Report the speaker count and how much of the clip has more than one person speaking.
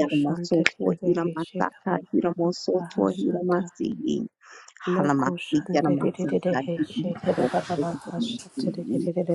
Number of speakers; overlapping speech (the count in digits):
2, about 76%